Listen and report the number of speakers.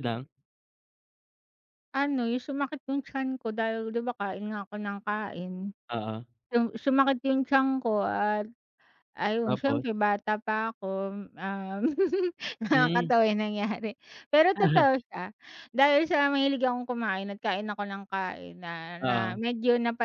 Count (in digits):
2